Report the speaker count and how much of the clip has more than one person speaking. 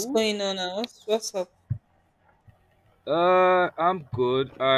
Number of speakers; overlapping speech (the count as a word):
two, about 4%